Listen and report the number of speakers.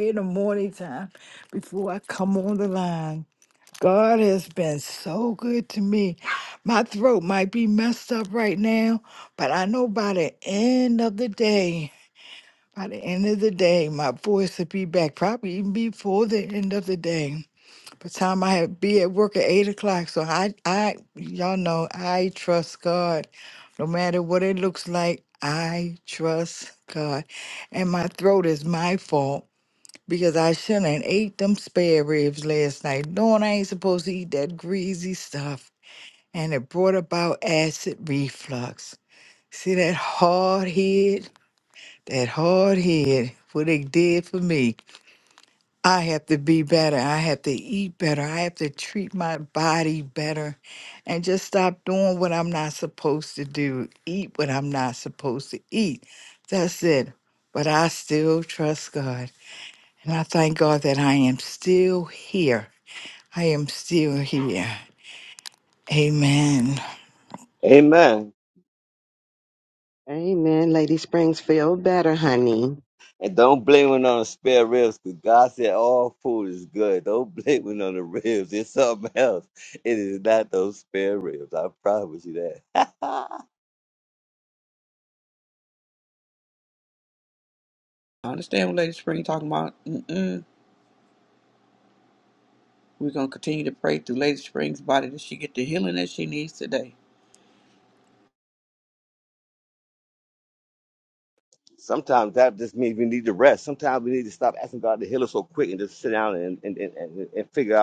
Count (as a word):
four